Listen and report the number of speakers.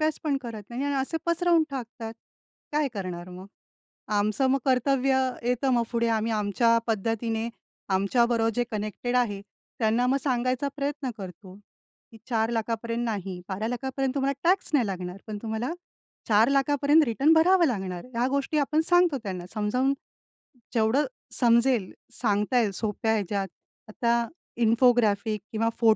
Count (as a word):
one